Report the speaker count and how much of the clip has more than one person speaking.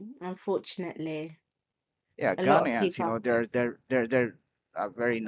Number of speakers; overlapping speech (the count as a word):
two, about 19%